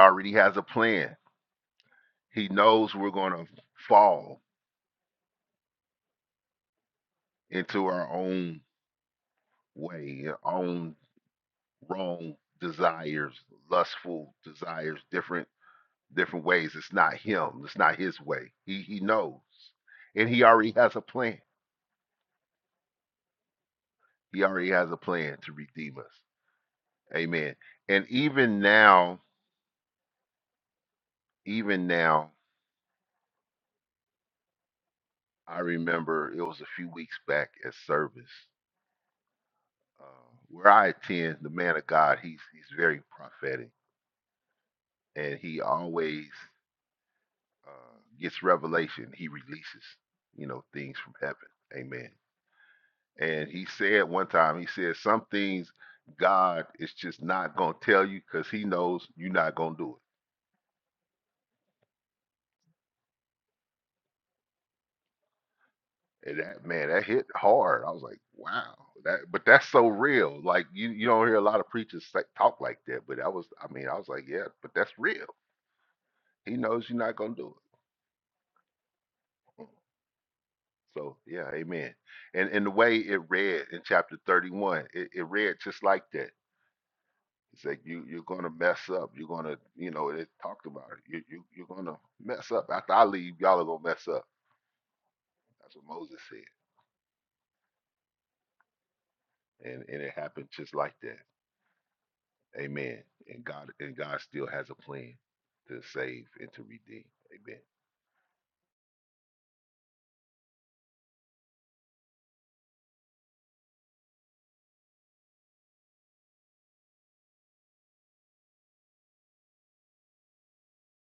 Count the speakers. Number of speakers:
1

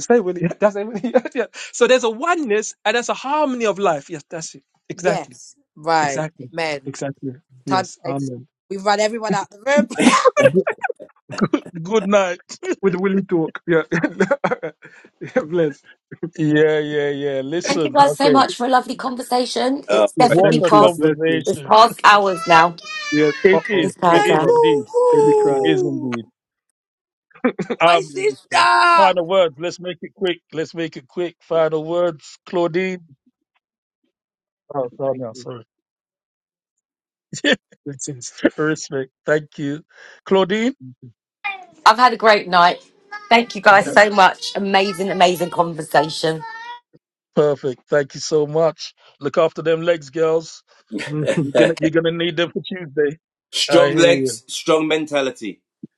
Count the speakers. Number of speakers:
5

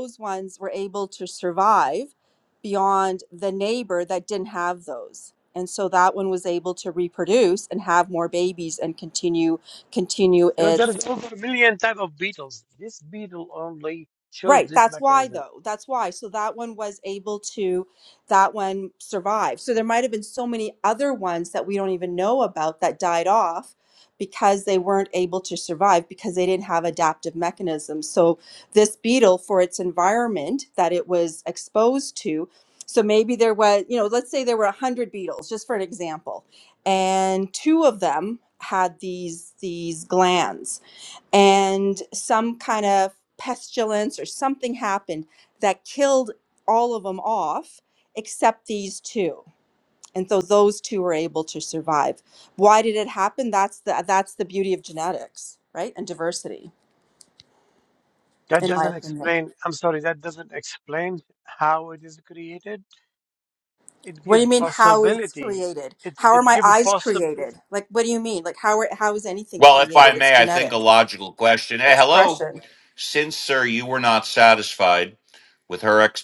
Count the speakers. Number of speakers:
3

